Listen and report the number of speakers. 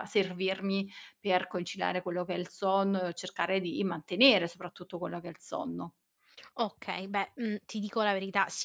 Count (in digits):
2